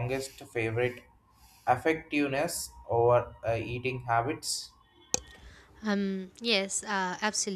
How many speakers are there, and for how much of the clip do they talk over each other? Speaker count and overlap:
two, no overlap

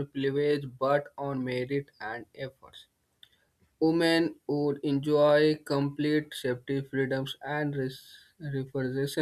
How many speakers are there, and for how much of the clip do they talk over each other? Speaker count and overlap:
one, no overlap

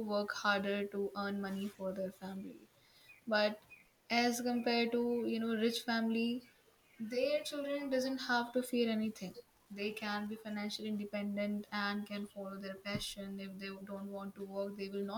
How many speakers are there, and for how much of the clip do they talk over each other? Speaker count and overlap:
one, no overlap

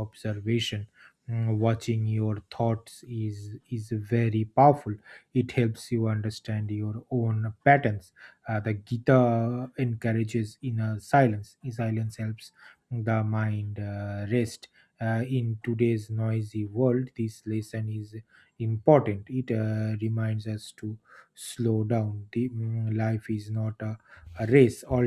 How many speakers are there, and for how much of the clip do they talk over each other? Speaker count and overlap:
one, no overlap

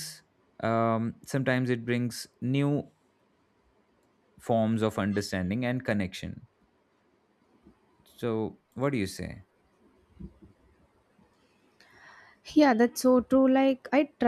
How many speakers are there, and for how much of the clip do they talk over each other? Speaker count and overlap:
two, no overlap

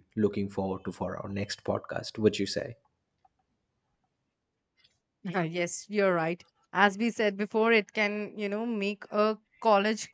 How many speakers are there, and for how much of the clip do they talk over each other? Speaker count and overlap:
two, no overlap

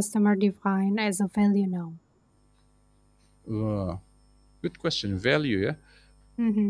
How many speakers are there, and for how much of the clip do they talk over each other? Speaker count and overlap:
two, no overlap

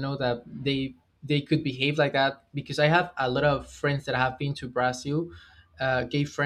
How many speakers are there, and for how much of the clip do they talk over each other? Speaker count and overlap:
one, no overlap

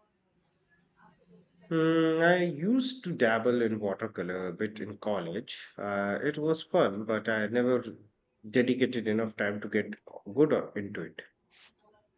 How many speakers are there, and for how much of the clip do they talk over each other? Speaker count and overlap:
one, no overlap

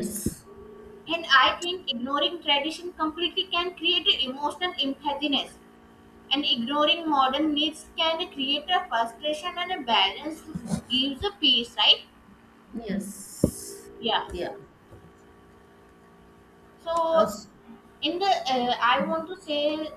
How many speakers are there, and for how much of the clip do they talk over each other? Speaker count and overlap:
two, about 1%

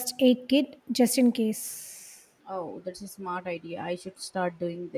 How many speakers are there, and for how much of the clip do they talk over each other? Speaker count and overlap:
two, no overlap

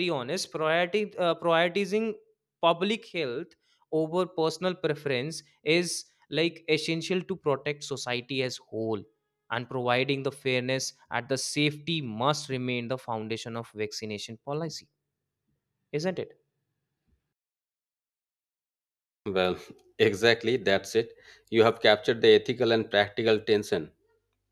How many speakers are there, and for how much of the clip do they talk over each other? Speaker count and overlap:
two, no overlap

